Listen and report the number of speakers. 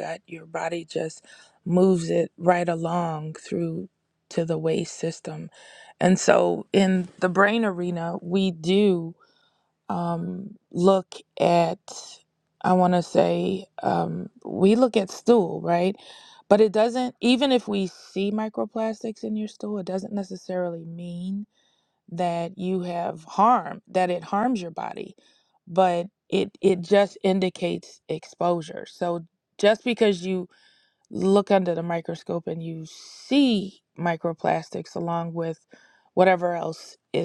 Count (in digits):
1